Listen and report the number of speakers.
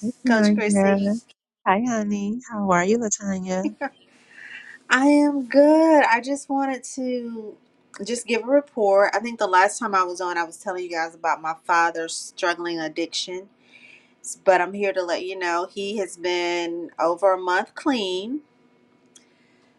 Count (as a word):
two